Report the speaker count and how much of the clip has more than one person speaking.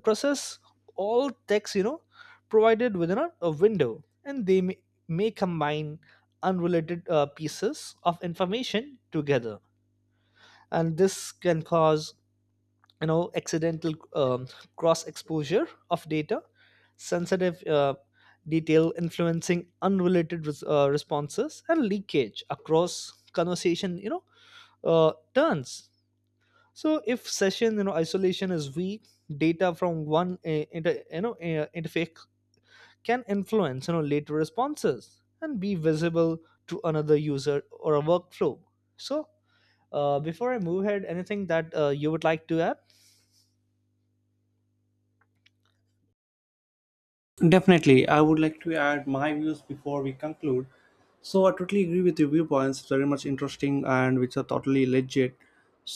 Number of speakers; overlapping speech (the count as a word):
two, no overlap